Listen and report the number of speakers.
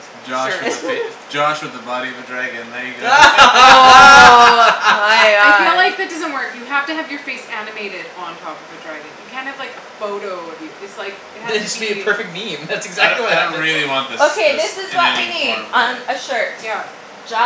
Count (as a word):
four